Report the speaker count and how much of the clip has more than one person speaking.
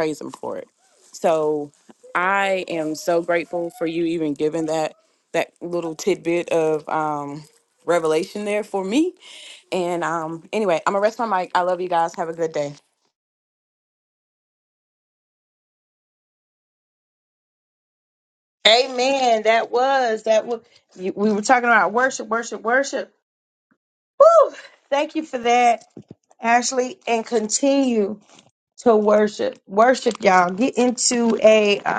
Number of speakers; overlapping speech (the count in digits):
2, no overlap